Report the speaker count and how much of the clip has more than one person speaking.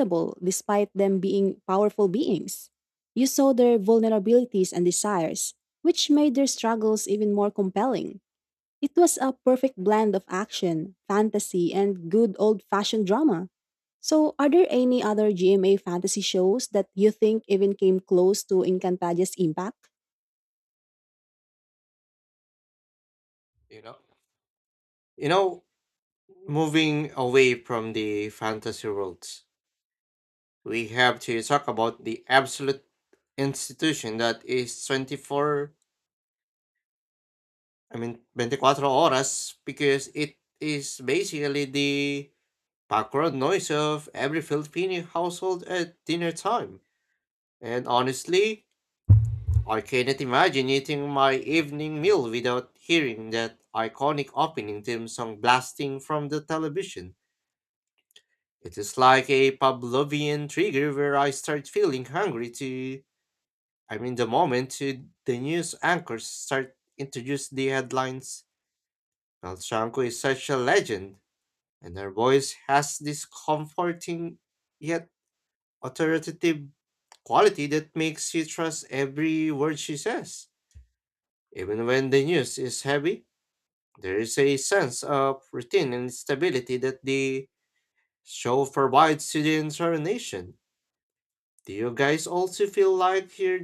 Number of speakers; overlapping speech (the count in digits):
2, no overlap